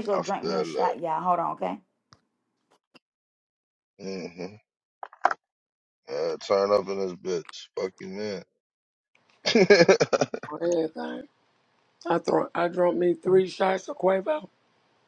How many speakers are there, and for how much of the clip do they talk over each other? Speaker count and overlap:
three, about 5%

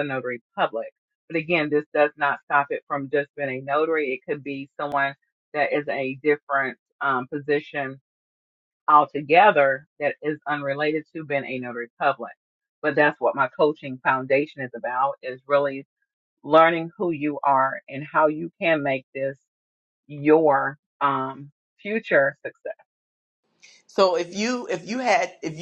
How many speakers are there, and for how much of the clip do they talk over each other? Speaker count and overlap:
two, no overlap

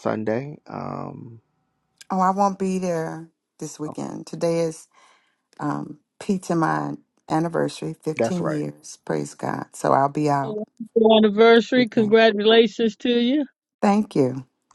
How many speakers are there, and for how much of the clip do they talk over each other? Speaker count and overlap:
three, about 6%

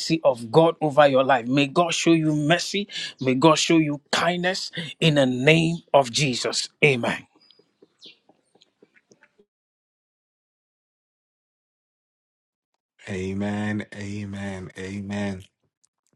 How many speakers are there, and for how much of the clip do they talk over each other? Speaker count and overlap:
two, no overlap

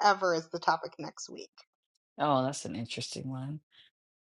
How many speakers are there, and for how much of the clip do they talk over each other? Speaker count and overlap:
two, no overlap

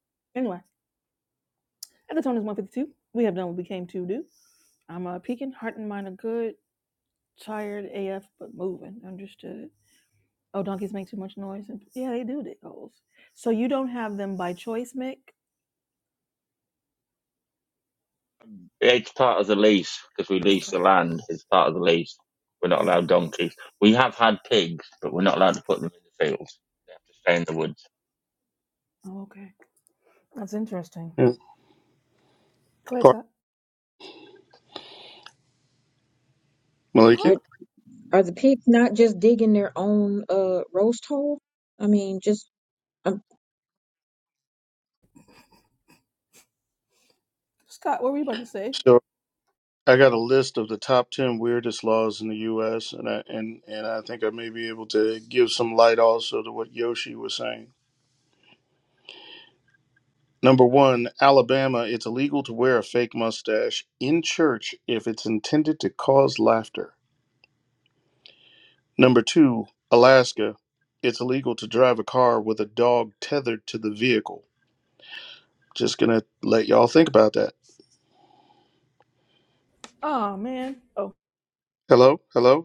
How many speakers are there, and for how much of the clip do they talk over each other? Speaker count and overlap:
four, about 1%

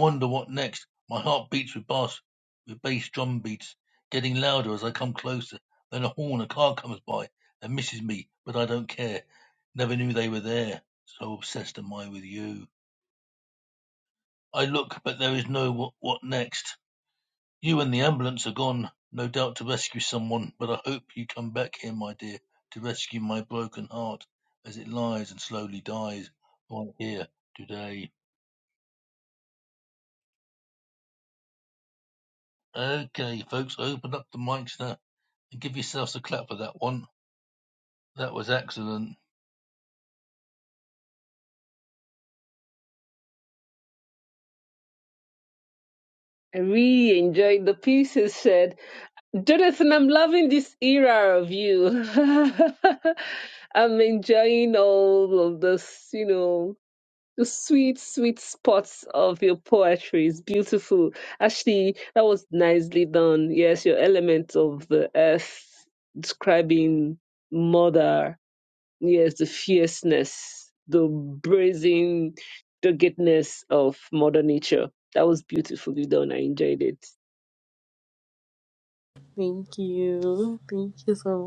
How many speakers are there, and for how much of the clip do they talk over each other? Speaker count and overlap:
three, no overlap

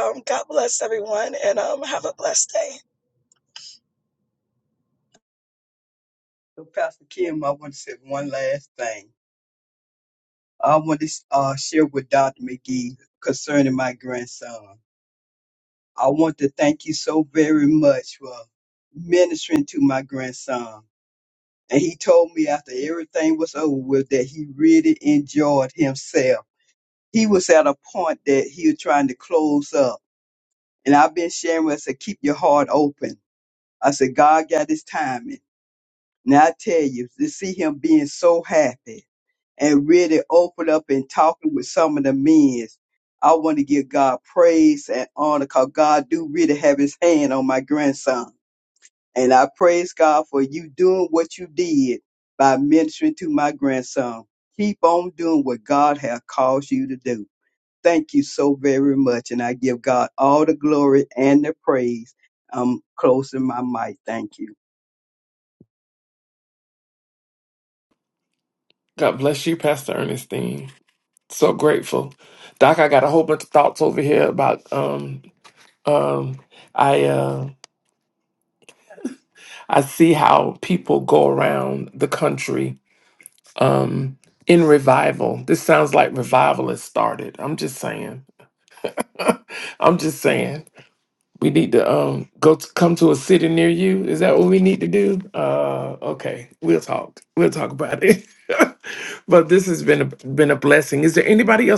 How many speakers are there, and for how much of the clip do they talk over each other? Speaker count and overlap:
three, no overlap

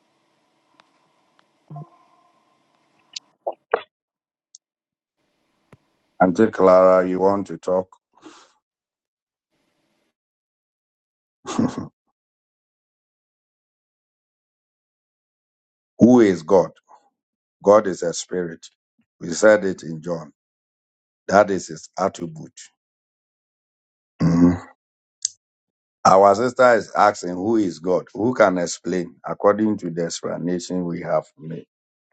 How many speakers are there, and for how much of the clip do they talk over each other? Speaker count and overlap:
one, no overlap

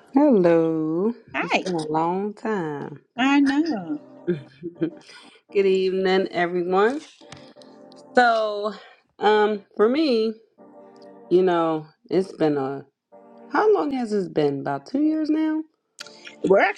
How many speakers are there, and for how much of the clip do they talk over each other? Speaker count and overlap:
two, about 2%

